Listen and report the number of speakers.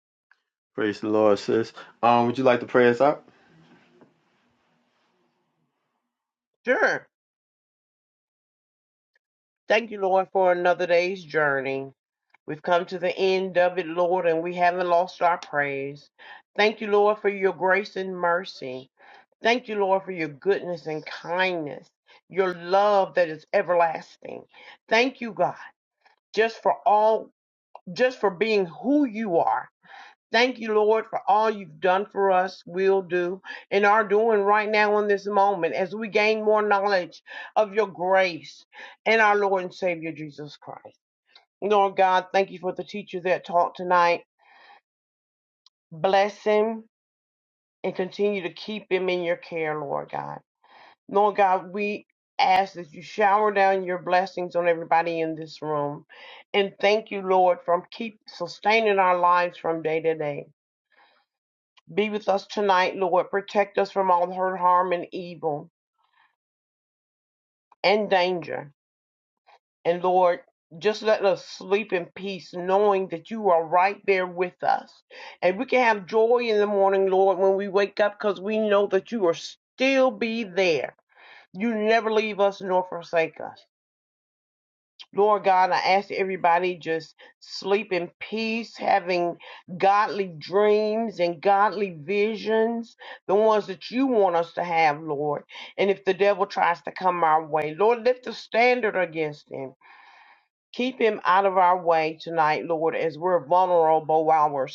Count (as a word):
two